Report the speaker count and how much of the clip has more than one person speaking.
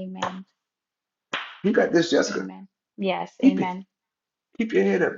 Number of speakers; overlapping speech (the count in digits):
2, about 10%